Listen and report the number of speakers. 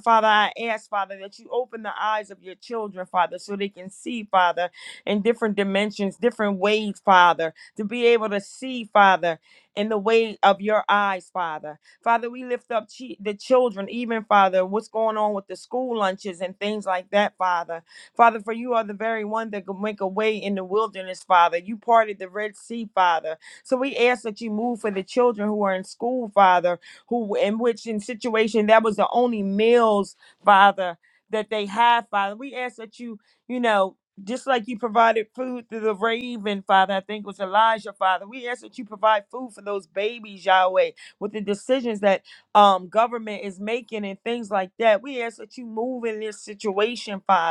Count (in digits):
1